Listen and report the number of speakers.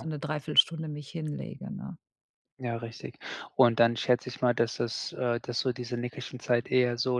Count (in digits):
2